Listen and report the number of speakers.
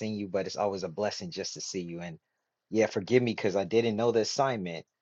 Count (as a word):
one